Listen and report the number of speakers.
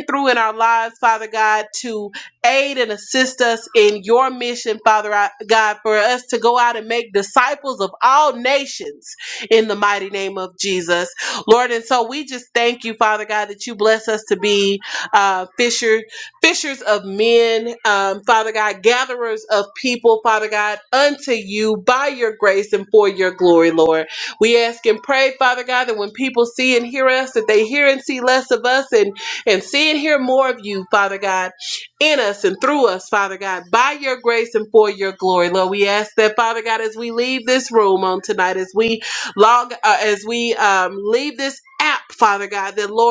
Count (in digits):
1